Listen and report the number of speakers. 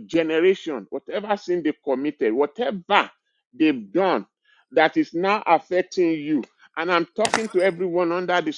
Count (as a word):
one